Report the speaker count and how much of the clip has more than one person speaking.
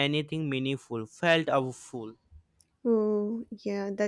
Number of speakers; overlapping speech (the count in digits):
2, no overlap